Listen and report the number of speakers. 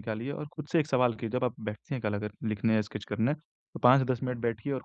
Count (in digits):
1